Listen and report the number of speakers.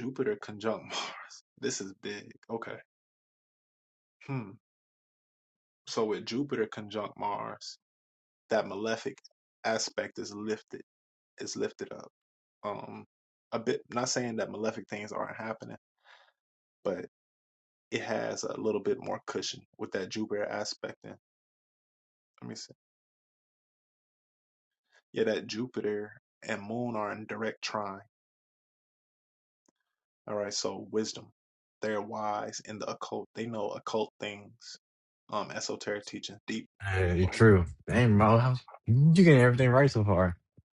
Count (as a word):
two